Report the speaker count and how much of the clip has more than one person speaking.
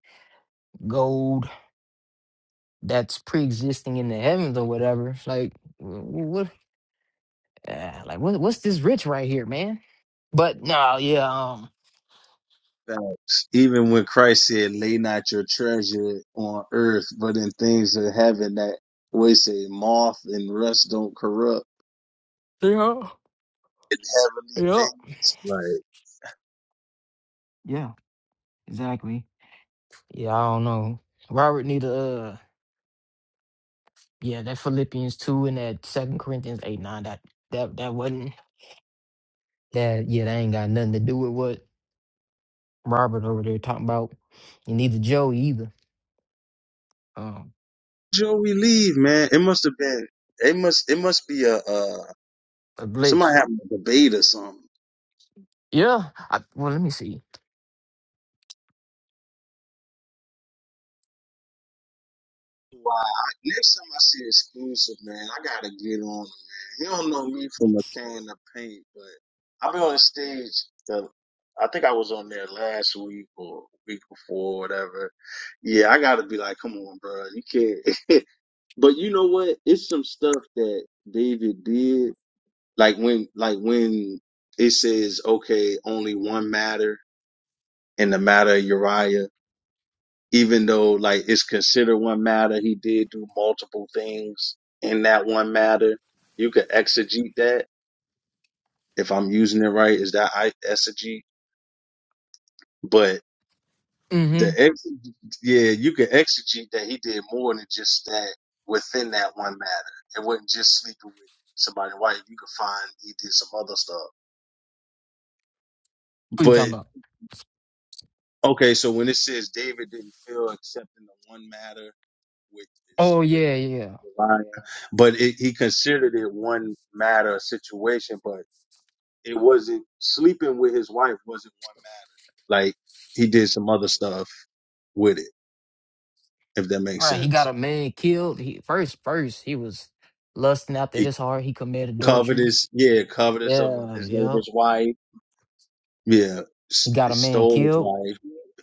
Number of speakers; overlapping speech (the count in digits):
2, about 3%